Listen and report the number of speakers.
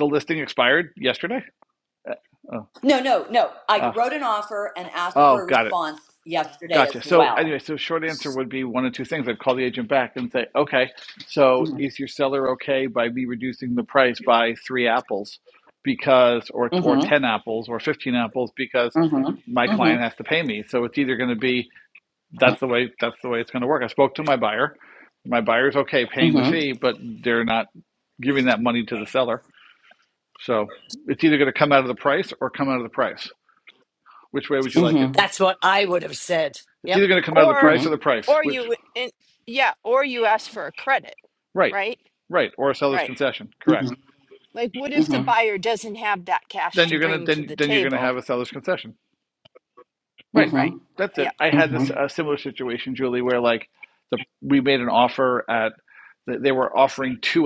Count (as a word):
four